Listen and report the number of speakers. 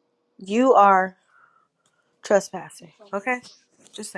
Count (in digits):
1